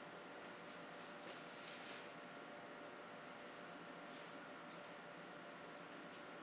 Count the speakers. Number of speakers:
zero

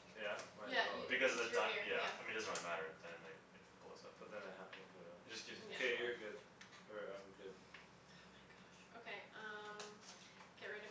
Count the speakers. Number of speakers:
three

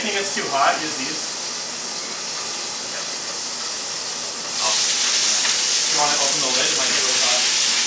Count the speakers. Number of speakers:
one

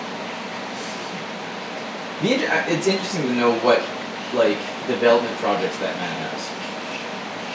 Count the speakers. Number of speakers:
one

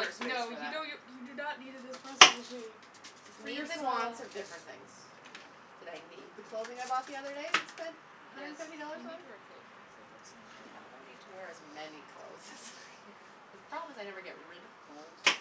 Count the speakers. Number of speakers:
two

